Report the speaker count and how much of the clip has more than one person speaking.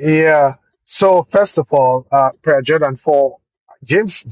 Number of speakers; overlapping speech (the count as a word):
one, no overlap